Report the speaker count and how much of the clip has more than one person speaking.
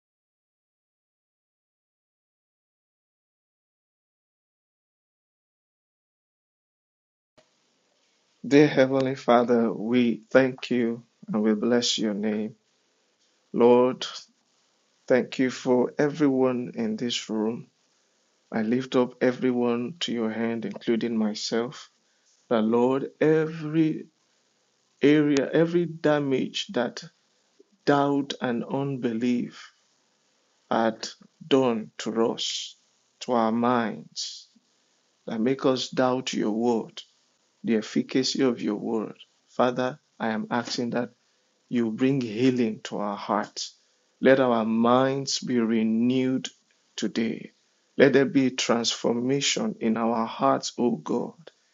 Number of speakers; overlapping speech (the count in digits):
1, no overlap